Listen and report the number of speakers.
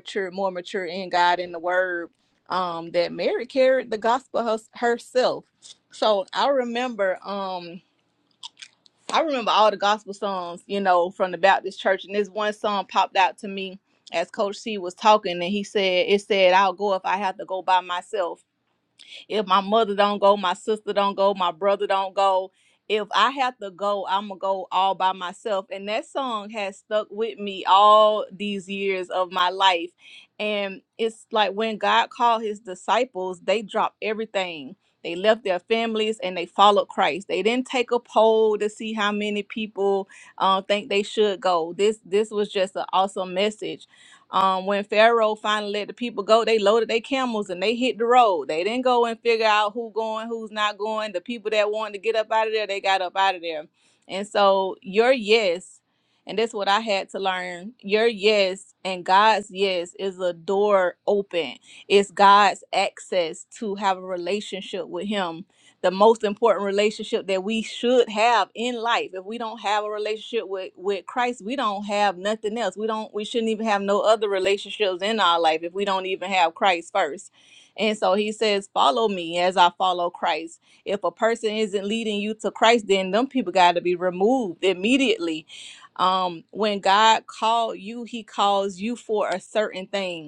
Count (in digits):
1